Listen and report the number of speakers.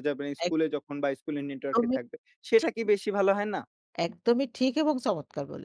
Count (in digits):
2